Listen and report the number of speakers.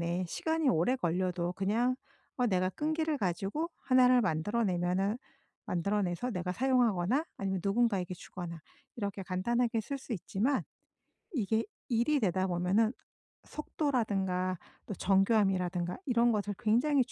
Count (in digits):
1